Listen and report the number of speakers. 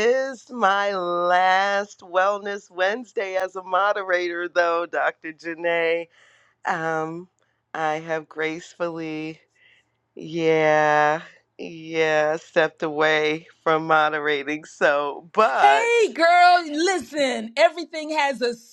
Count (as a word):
two